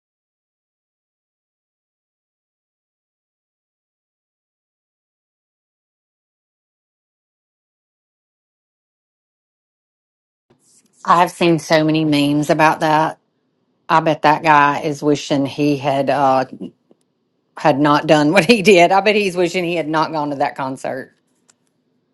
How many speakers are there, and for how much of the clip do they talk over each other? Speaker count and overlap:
one, no overlap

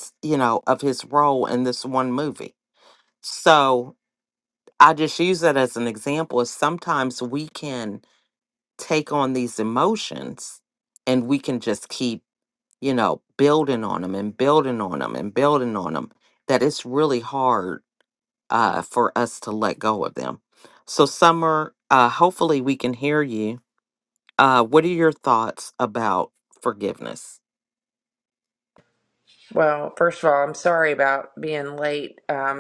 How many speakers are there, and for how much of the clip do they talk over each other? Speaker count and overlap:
two, no overlap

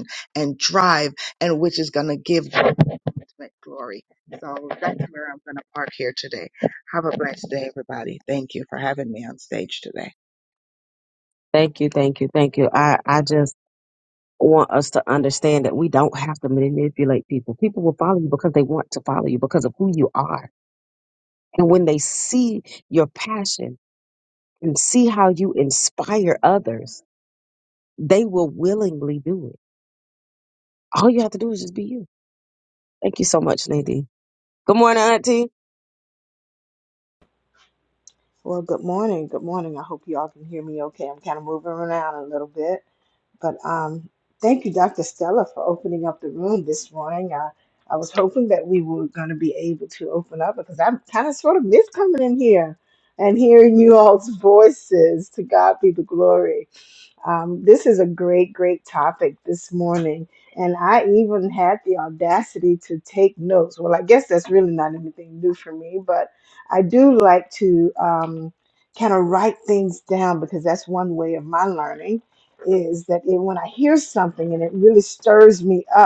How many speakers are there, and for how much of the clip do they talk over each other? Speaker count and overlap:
three, no overlap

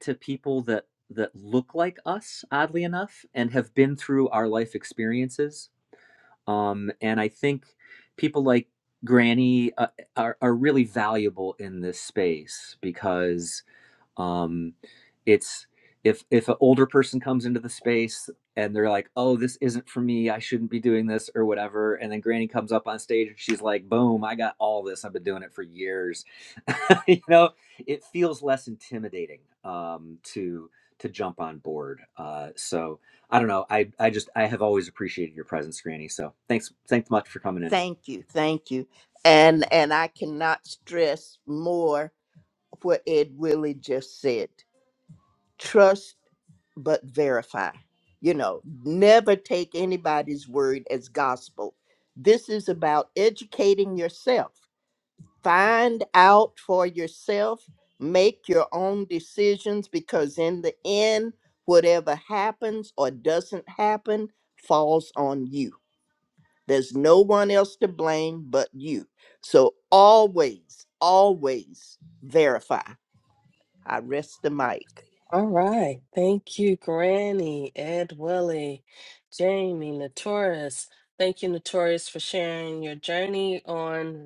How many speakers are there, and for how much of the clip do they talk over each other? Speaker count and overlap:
three, under 1%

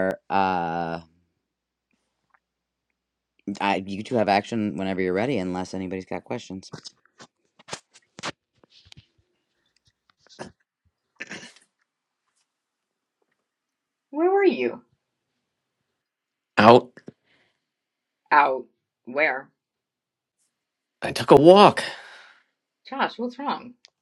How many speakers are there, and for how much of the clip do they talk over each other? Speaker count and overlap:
three, no overlap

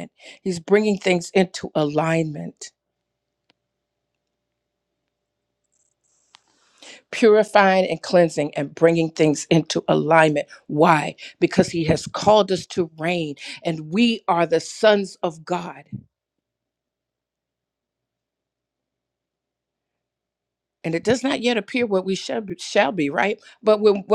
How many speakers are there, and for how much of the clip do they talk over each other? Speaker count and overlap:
one, no overlap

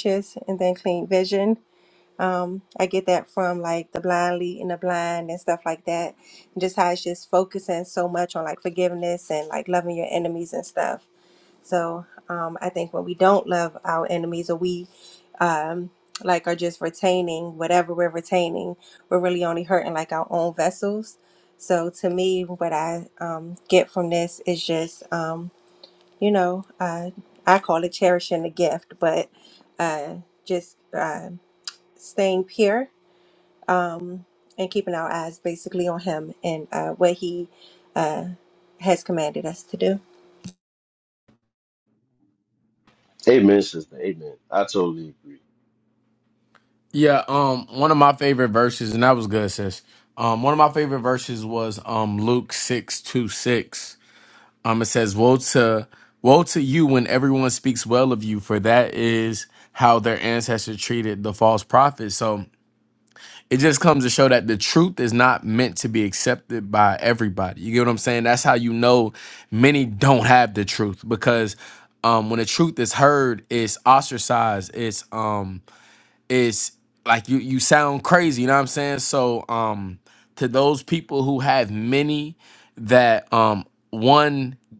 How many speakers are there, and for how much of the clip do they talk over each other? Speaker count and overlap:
three, no overlap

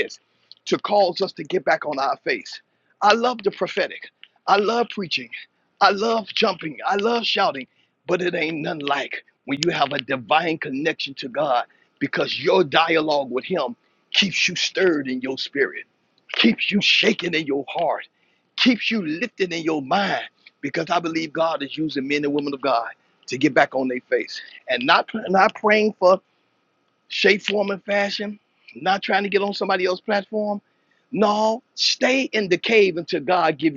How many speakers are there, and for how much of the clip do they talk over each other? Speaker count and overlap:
one, no overlap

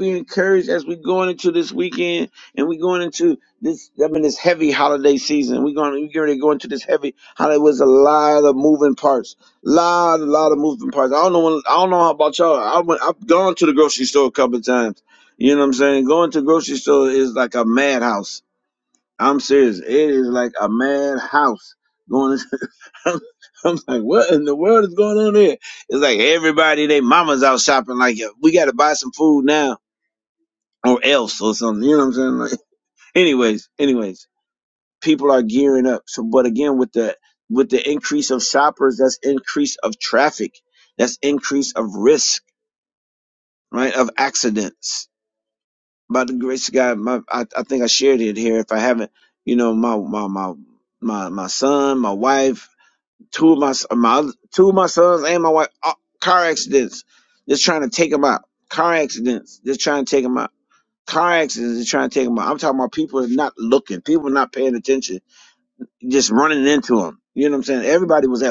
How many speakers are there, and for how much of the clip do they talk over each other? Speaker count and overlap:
one, no overlap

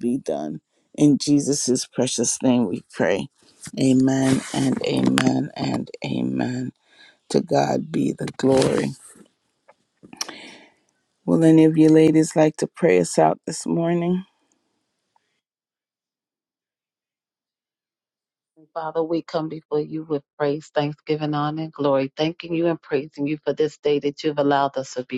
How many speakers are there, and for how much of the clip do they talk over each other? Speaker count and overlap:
two, no overlap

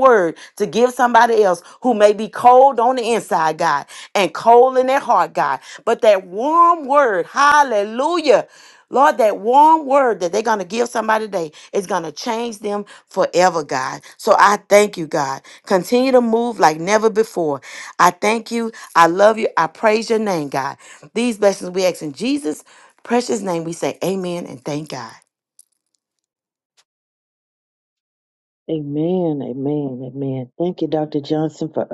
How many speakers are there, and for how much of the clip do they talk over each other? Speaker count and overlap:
two, no overlap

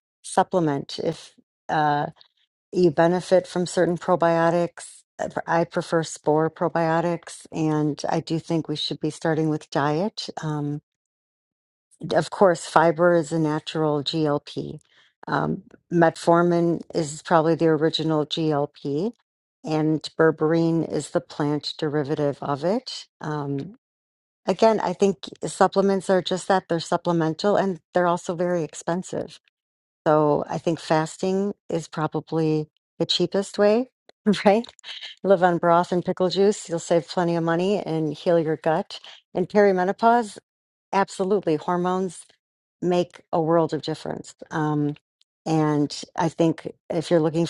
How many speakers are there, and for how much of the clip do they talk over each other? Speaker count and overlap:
one, no overlap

